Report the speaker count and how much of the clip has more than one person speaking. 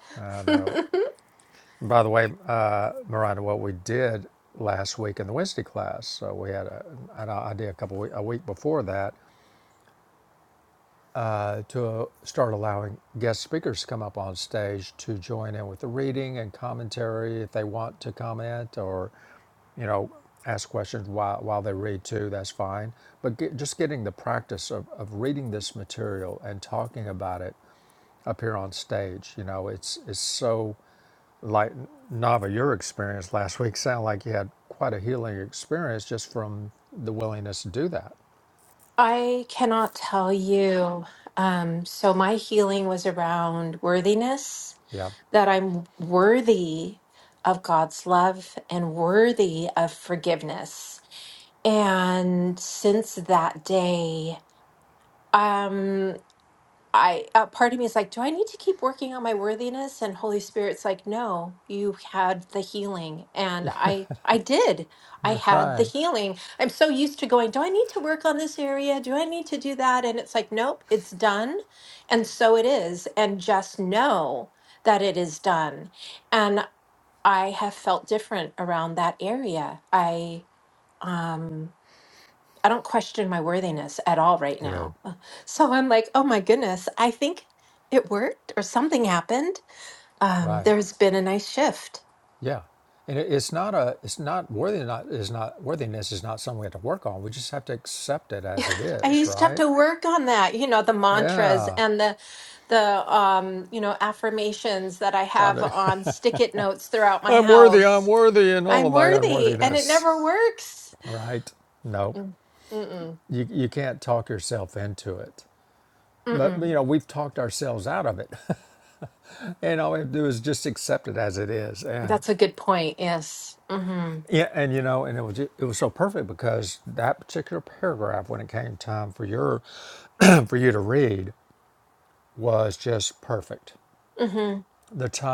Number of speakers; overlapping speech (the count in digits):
2, about 4%